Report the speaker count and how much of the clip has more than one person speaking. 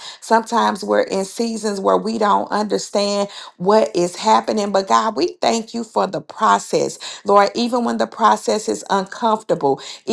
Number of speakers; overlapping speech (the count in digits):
1, no overlap